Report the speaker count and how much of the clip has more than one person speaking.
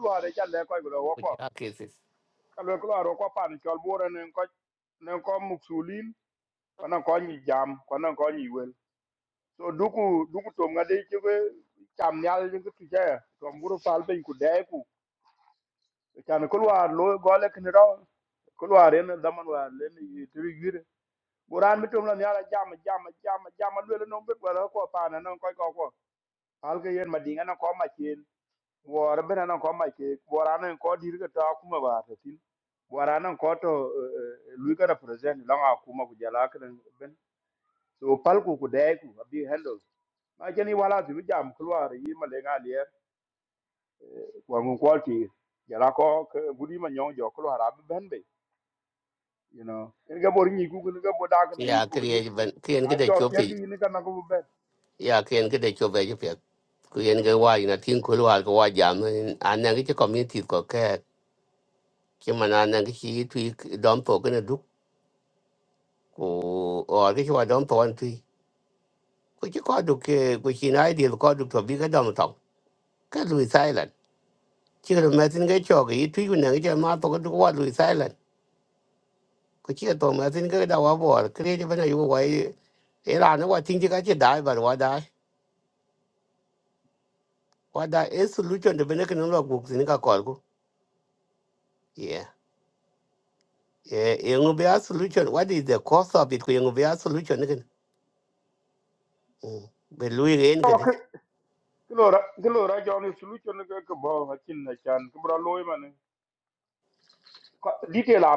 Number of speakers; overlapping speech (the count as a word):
two, about 2%